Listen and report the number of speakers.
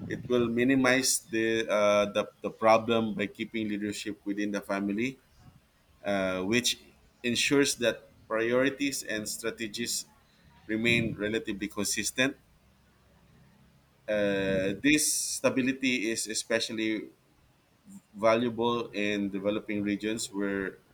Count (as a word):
one